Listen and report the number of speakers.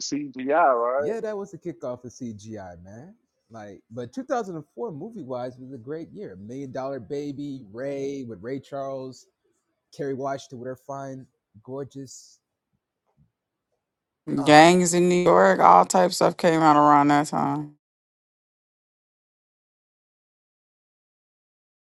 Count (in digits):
3